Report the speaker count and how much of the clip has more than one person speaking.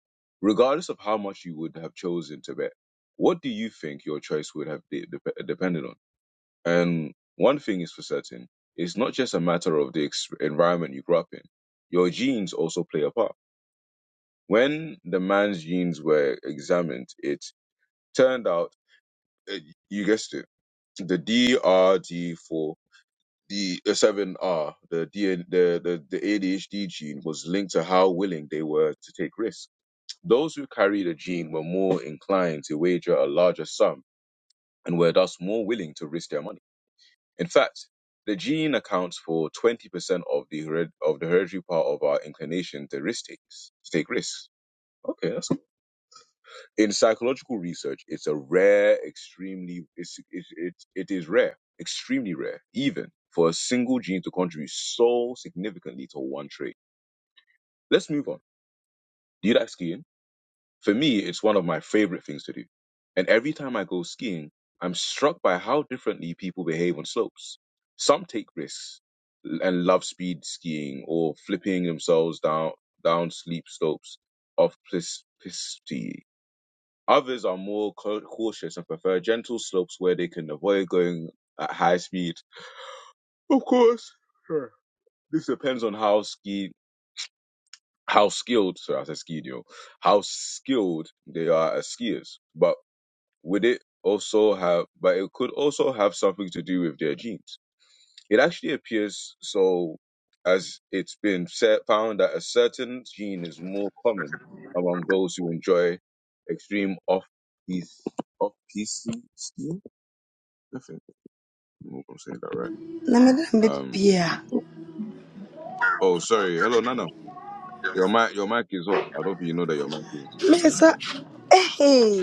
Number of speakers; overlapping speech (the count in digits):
2, about 1%